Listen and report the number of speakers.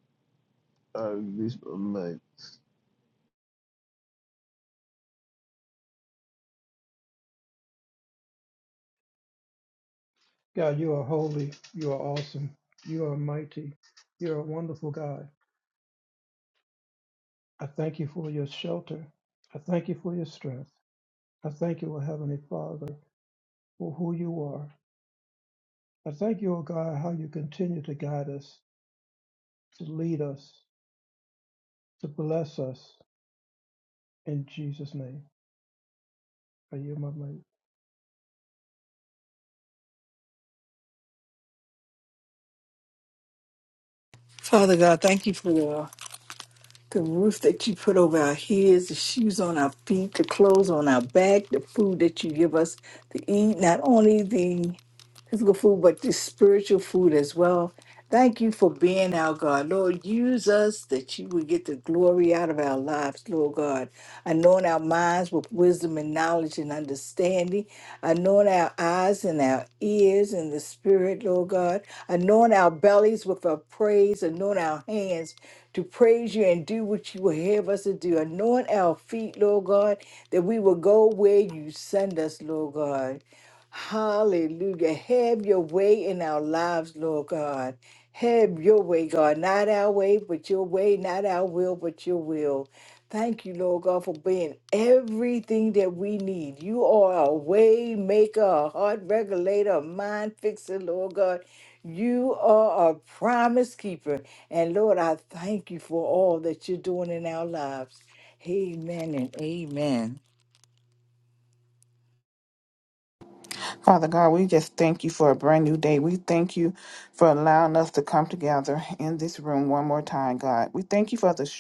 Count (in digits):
4